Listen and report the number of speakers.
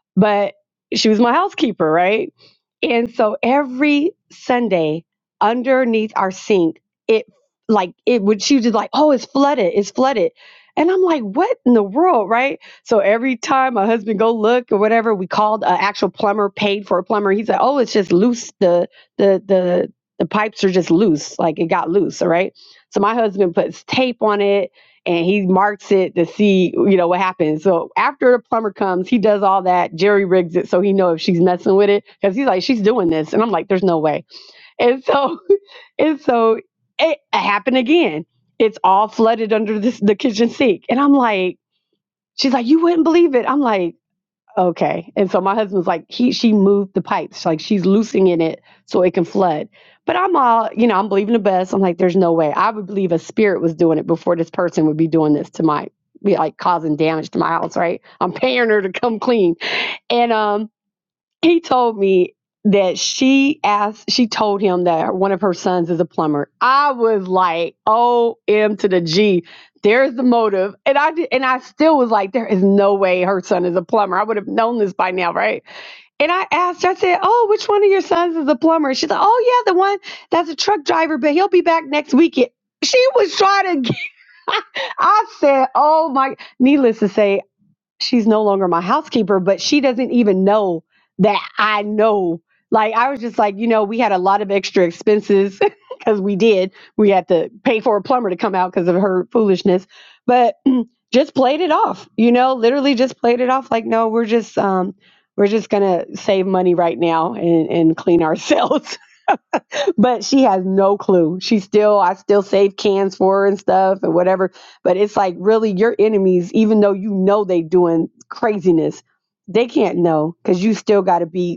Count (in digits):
1